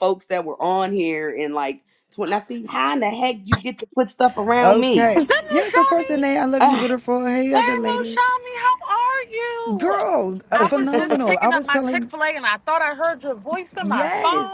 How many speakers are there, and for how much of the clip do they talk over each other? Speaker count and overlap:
3, about 40%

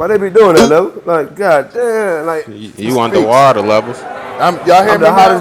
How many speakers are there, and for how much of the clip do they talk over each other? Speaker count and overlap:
3, about 24%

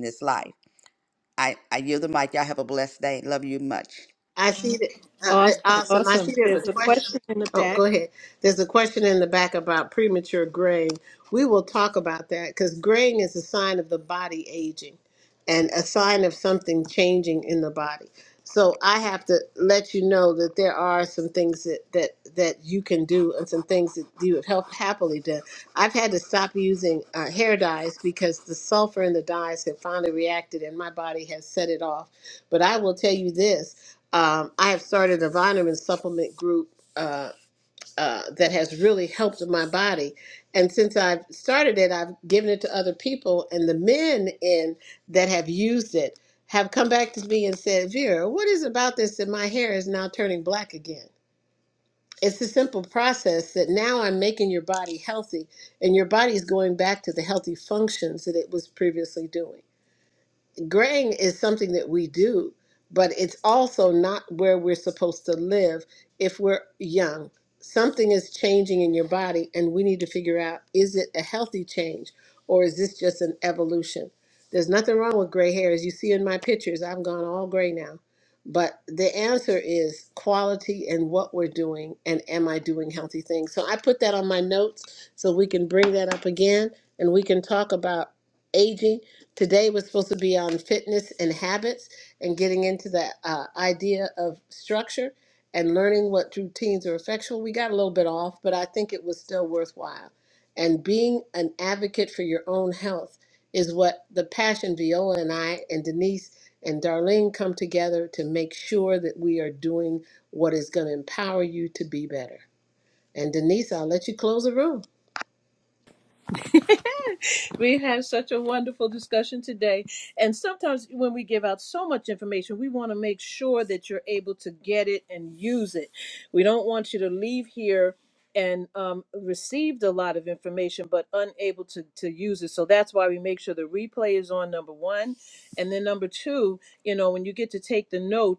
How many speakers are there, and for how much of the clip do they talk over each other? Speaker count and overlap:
3, about 1%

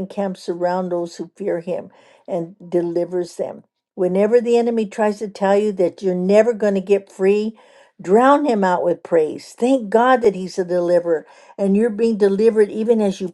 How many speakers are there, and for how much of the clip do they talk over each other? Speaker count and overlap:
1, no overlap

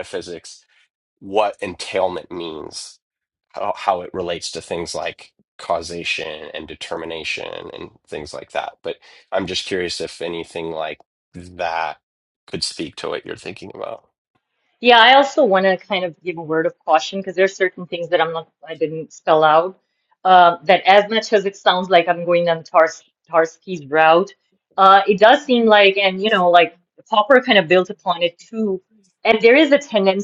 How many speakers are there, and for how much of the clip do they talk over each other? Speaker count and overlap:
2, no overlap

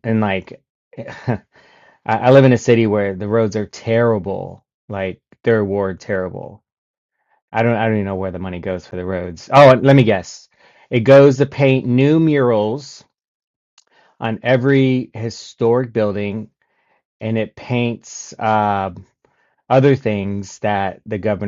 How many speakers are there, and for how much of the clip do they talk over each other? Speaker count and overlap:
1, no overlap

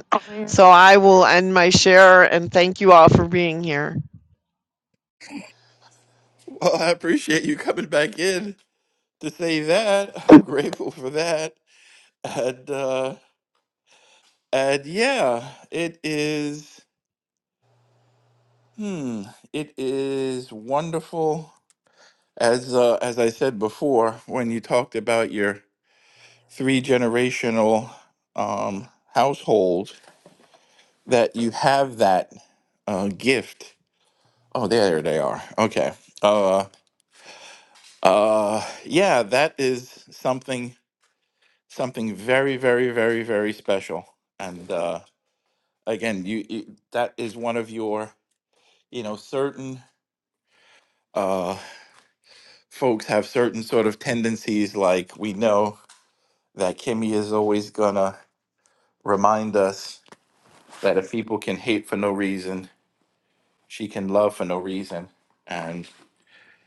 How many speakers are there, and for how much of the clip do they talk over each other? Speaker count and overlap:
2, no overlap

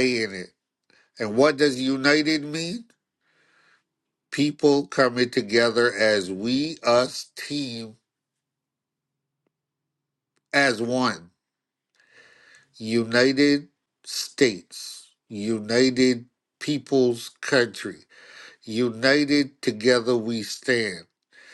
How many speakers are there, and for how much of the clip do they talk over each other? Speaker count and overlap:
1, no overlap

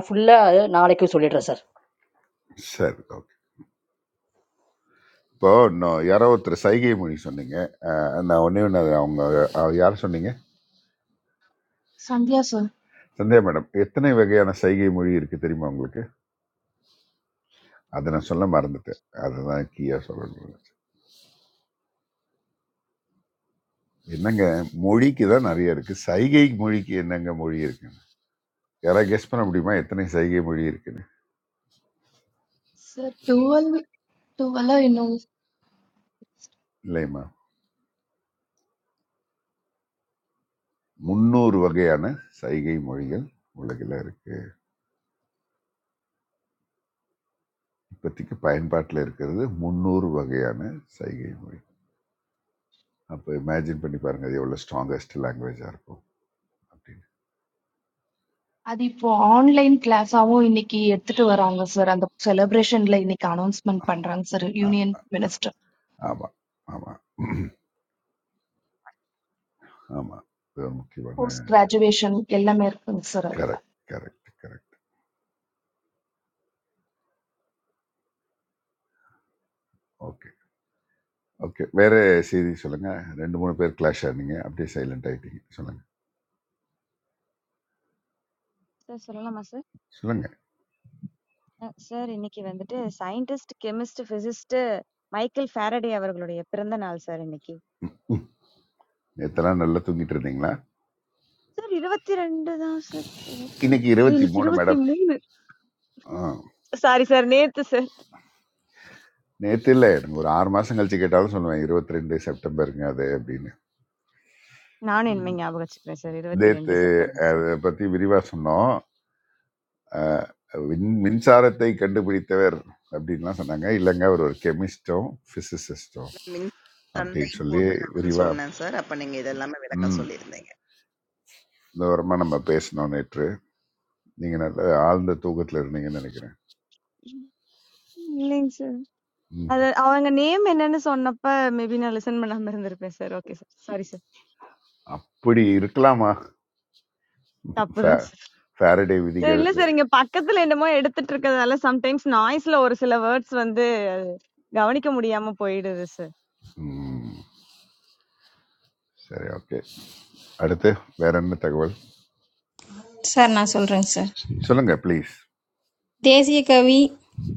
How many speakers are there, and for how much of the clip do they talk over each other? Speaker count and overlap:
6, about 3%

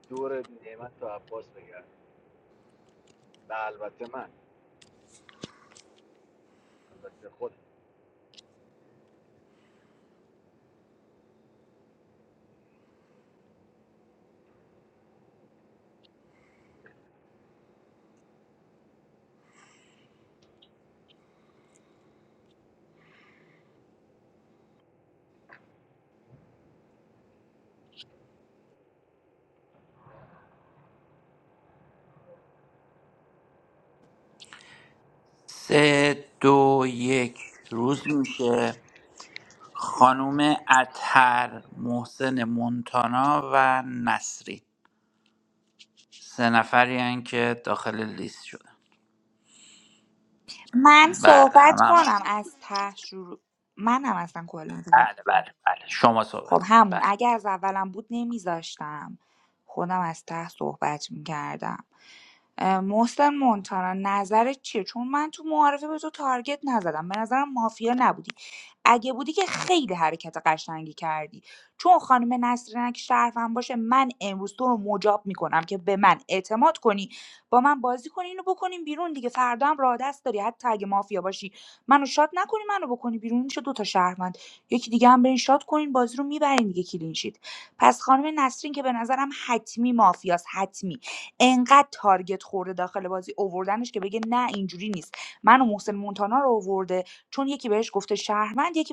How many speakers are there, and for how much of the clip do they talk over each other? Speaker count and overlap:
3, about 2%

